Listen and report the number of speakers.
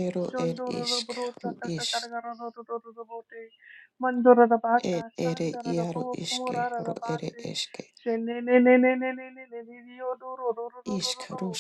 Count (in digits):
2